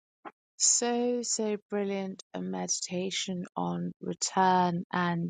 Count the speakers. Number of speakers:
1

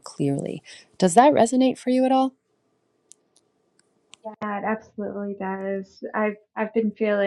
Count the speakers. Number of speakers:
2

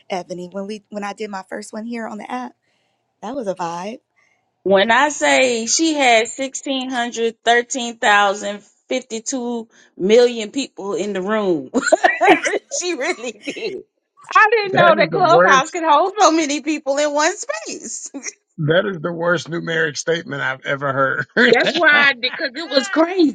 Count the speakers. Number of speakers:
3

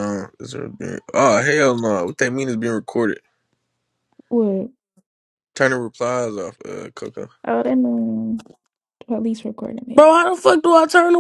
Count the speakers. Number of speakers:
3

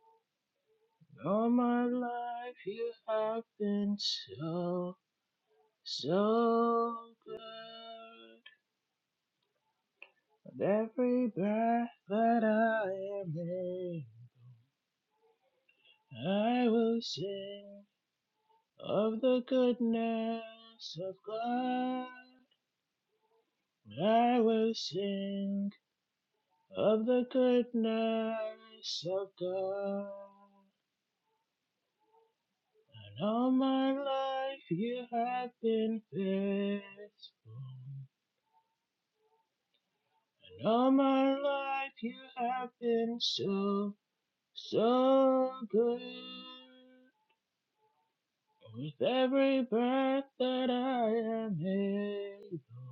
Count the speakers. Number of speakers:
1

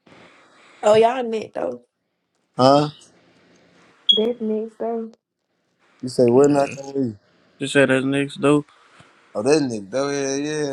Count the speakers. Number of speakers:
3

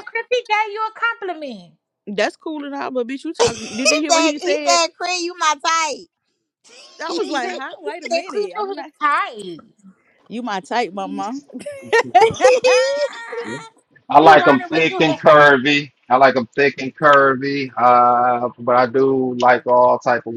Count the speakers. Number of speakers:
4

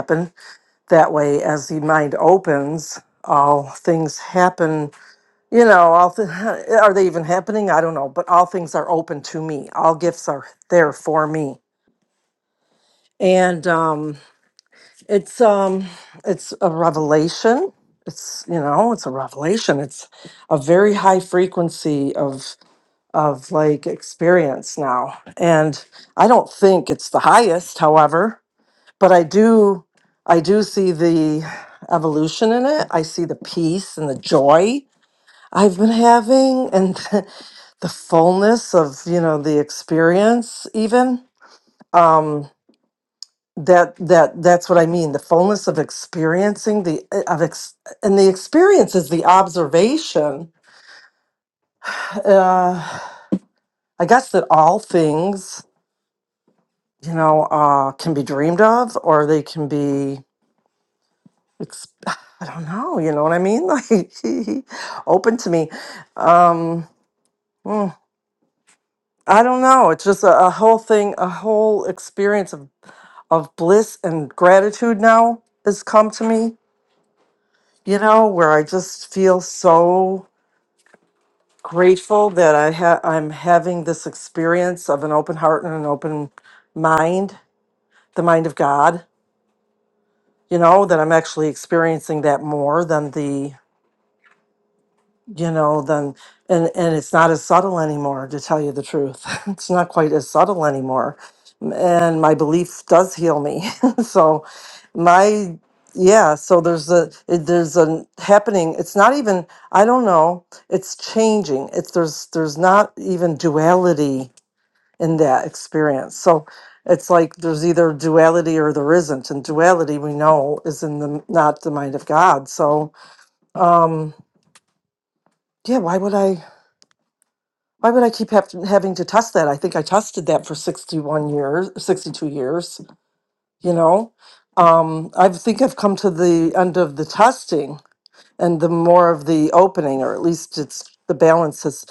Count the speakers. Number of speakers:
1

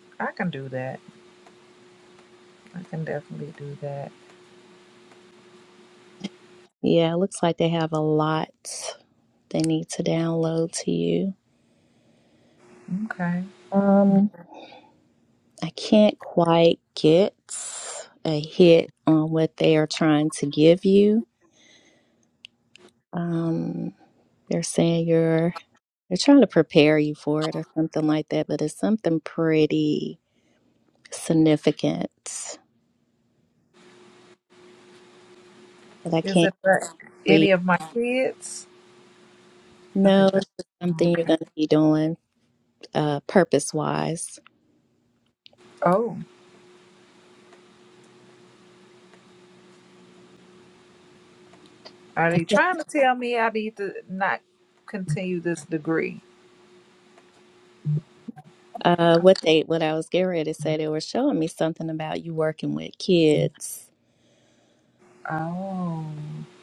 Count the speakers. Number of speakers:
2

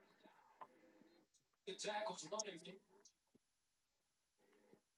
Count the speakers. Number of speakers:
0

